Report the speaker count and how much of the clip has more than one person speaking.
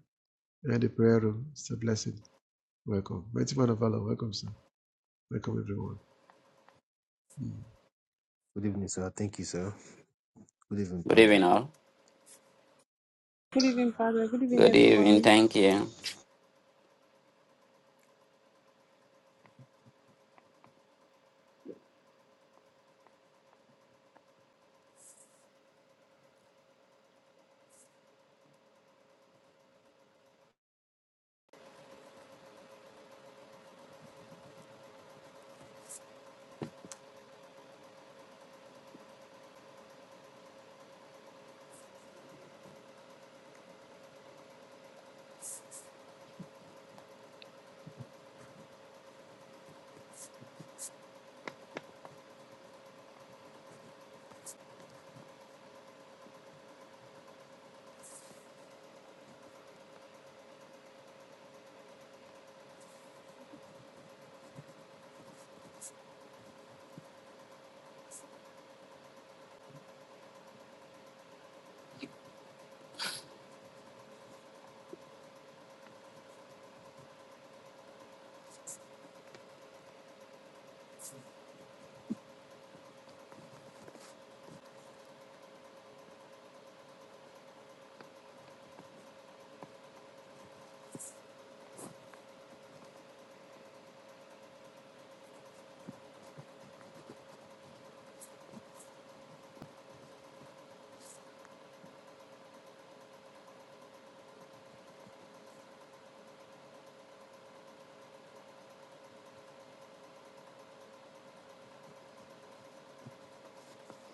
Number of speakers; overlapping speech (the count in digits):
4, about 1%